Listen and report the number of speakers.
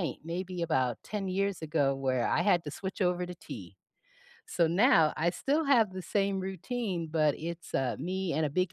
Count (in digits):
1